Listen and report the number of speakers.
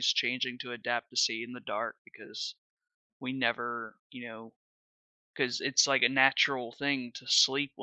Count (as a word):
one